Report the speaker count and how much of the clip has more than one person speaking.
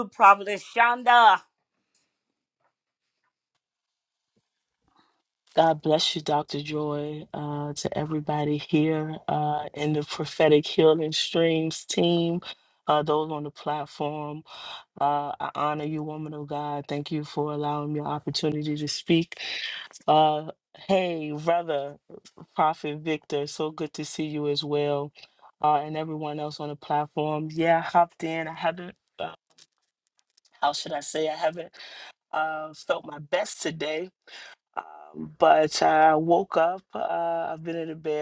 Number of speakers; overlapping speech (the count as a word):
two, no overlap